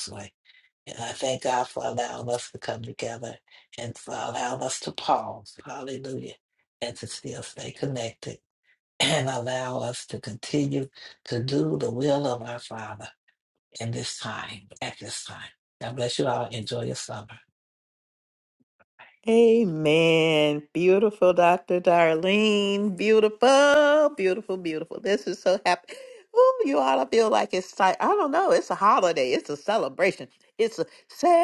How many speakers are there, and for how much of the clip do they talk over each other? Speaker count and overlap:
2, no overlap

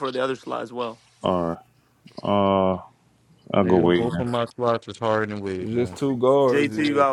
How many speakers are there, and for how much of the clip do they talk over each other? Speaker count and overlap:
4, about 21%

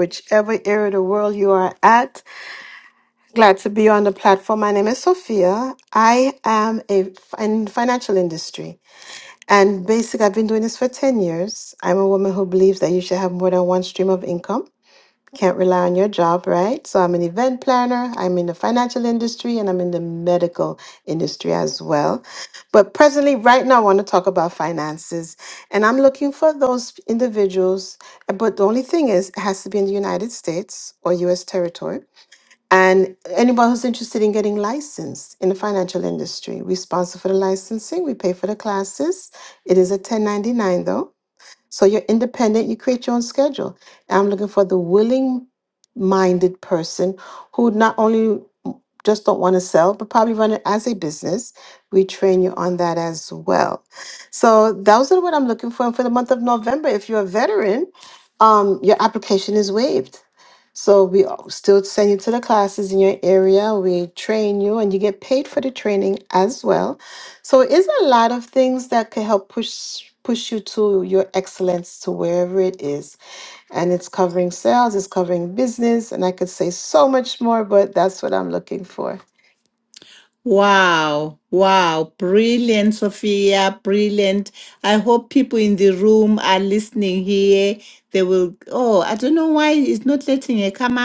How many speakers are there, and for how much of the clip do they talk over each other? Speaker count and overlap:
2, no overlap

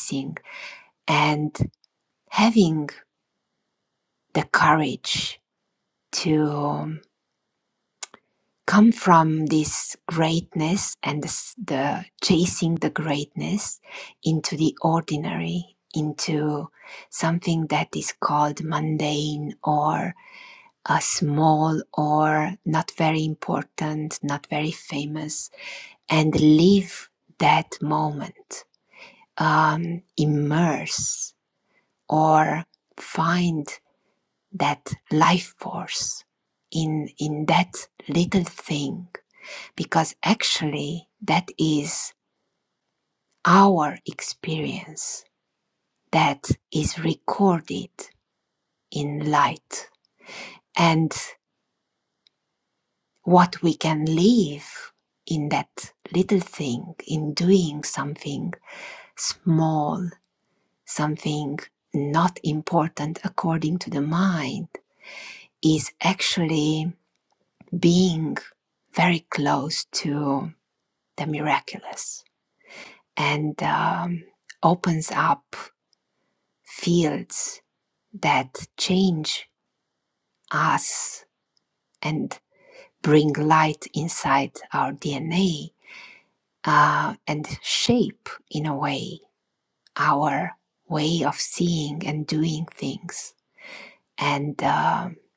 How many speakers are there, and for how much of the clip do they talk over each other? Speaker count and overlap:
1, no overlap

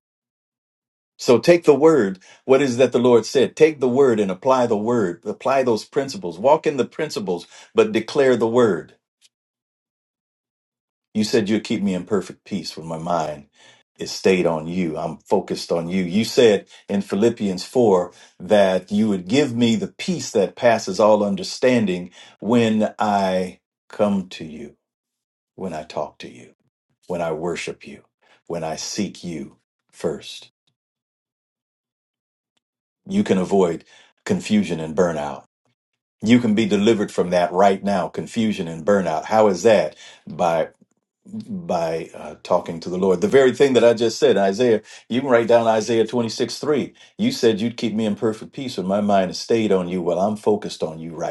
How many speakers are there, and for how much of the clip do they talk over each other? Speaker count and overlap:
1, no overlap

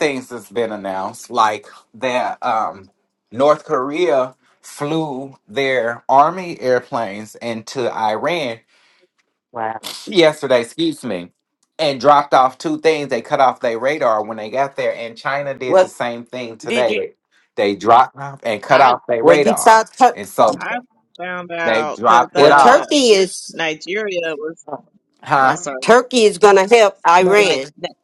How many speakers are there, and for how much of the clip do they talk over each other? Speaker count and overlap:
3, about 12%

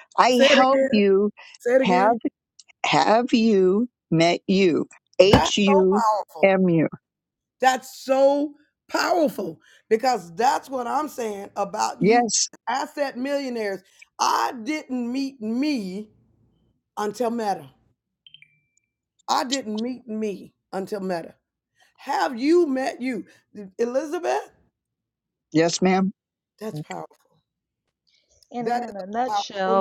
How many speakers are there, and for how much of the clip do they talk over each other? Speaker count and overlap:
3, about 11%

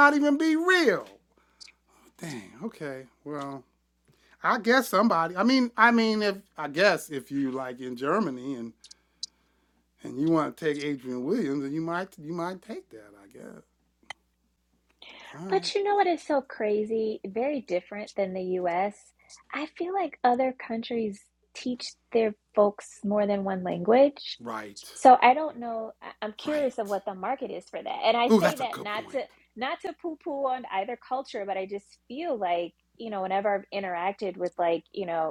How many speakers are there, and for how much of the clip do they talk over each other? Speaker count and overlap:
2, about 3%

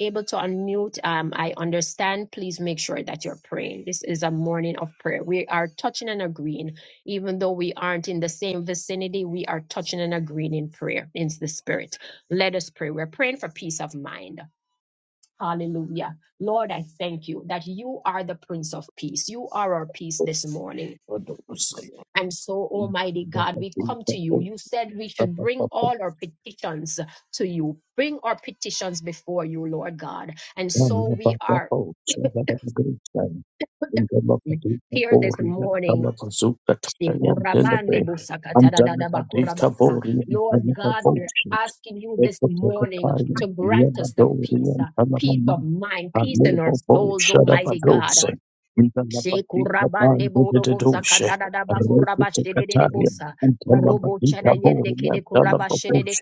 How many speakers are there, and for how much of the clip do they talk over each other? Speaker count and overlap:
2, about 26%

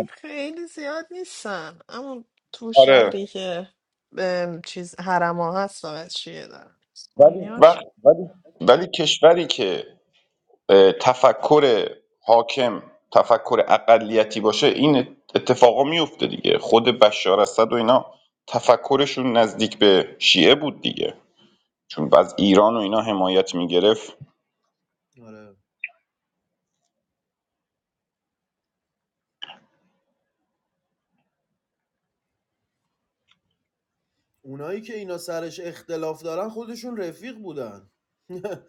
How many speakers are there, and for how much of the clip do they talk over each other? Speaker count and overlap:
3, about 2%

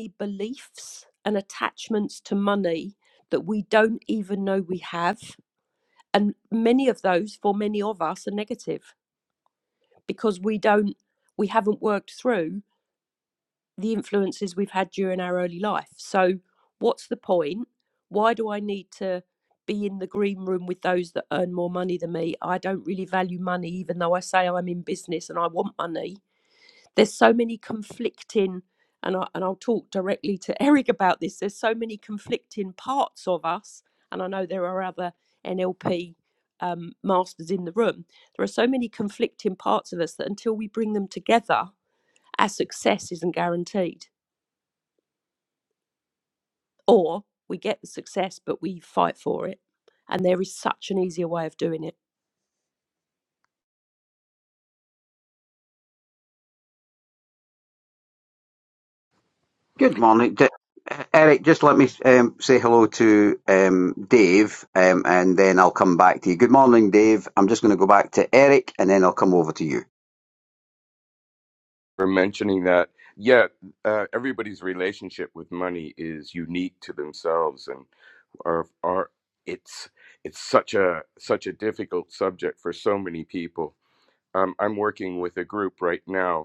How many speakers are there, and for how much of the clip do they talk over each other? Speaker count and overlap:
3, no overlap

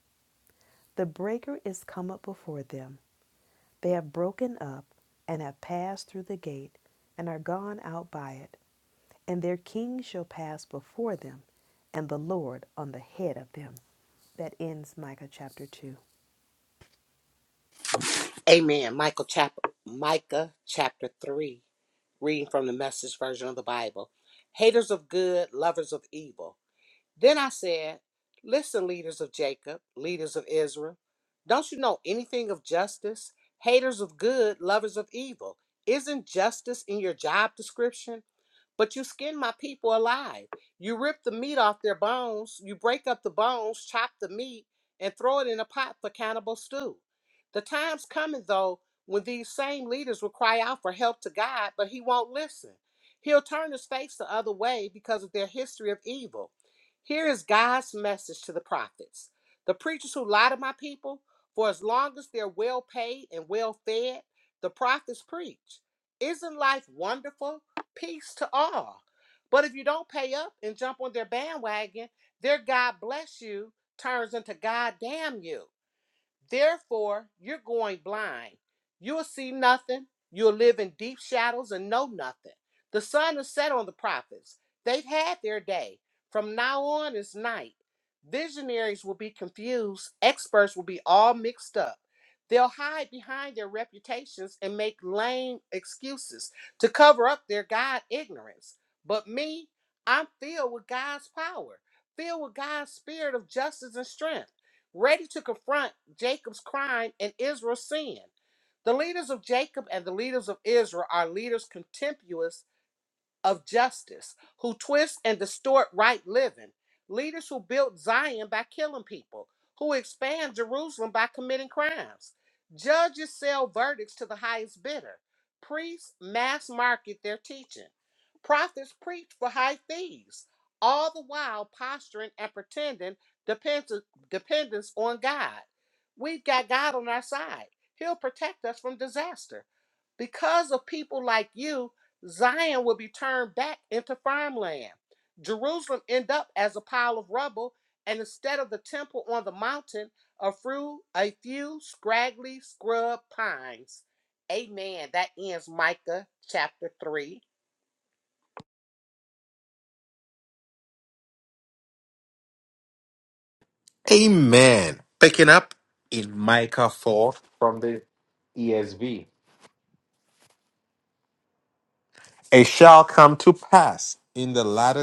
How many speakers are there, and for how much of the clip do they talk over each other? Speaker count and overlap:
3, no overlap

